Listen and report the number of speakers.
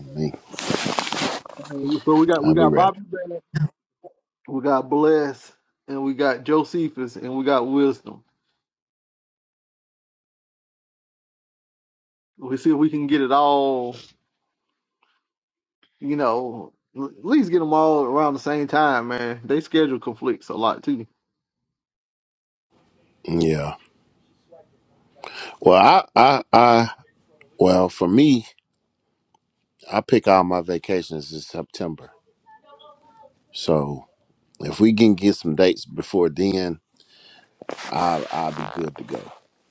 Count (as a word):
two